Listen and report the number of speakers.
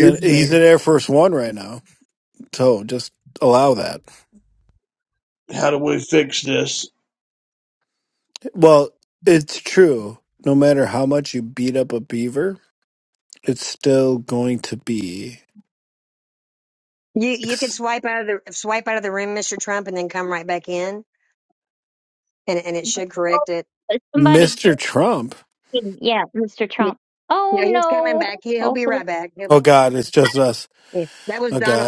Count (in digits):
4